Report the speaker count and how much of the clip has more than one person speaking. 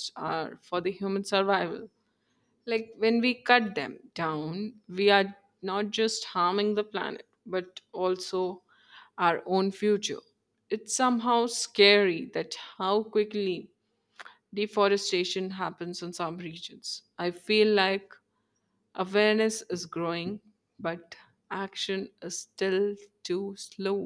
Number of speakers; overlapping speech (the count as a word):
one, no overlap